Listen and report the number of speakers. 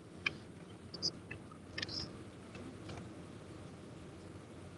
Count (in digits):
0